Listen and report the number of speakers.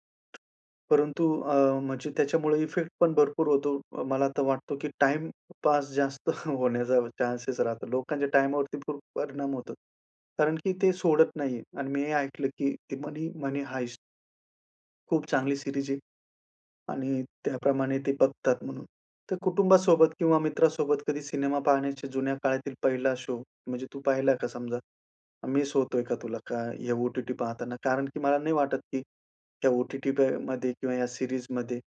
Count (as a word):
one